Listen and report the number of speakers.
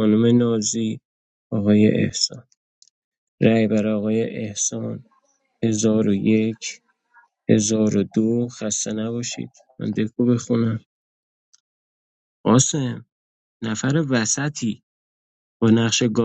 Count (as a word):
one